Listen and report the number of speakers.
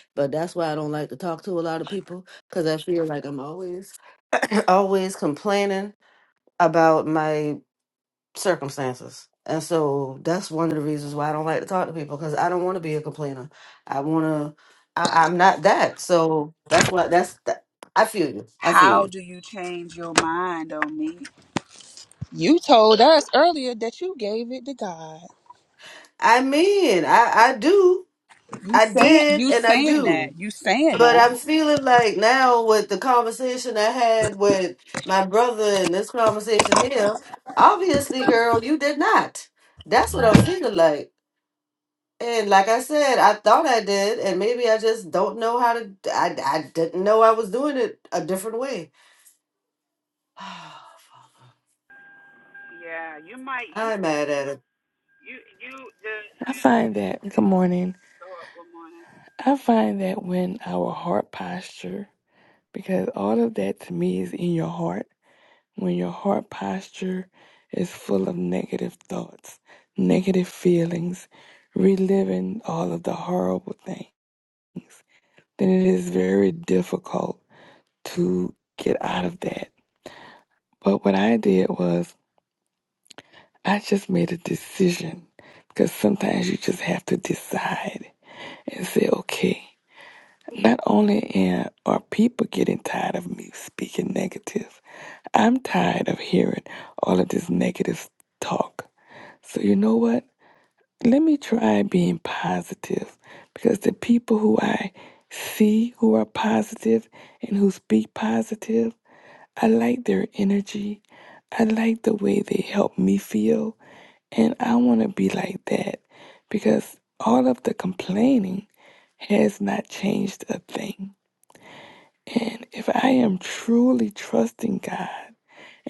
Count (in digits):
3